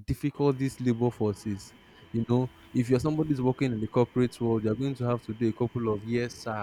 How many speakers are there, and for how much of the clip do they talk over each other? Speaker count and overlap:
one, no overlap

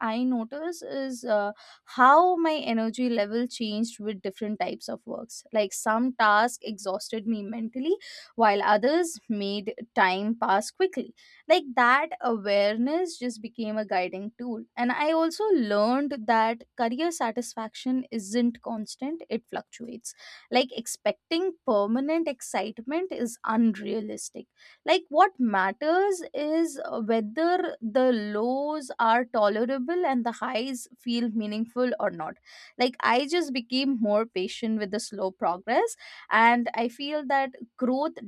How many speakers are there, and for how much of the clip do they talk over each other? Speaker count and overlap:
one, no overlap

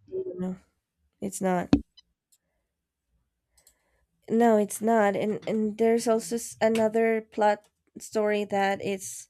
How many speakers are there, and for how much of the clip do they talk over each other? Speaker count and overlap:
one, no overlap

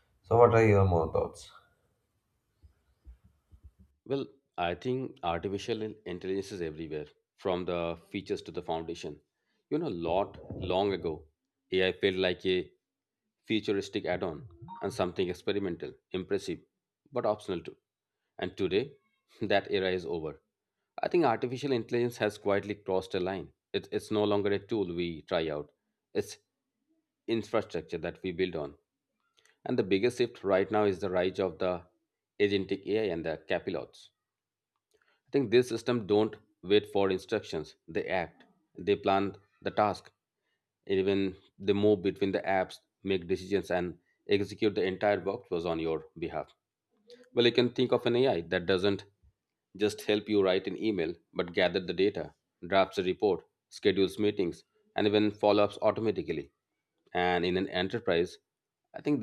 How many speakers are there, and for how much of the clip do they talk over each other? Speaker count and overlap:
two, no overlap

